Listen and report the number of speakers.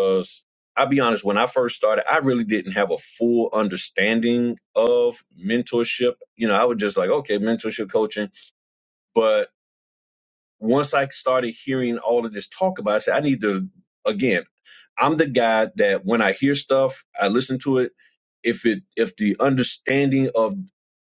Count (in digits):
1